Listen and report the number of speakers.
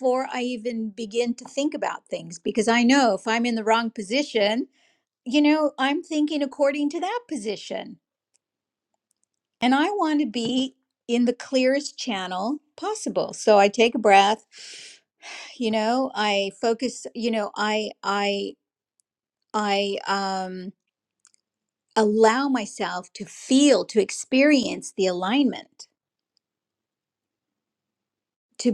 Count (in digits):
1